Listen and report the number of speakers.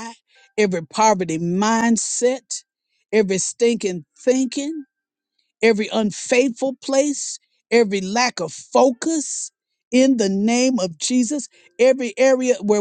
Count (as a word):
one